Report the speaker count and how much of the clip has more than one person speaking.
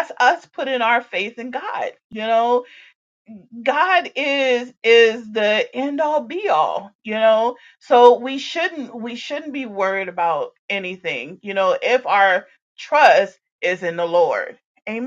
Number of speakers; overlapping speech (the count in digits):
1, no overlap